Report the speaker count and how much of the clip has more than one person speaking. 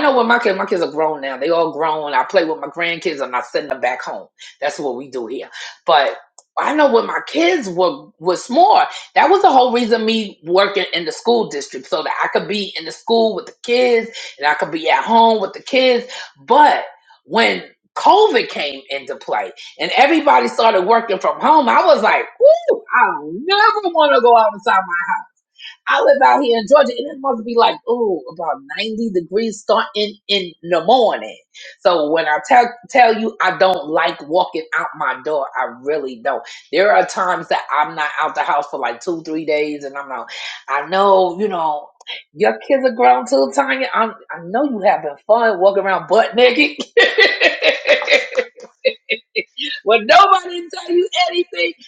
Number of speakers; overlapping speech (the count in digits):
1, no overlap